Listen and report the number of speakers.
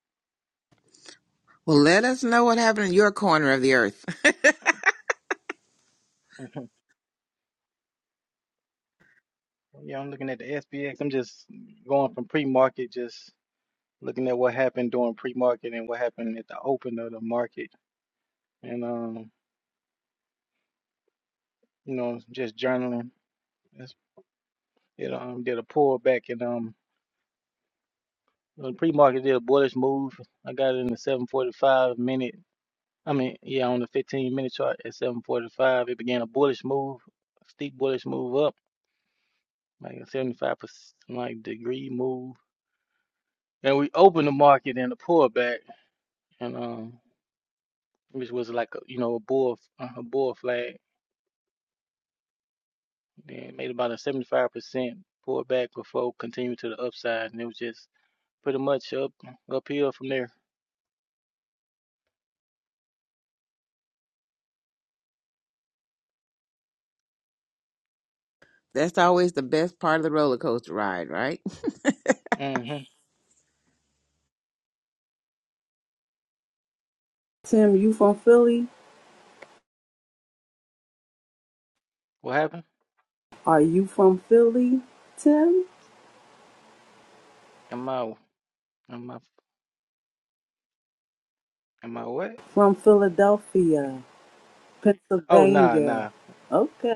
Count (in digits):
3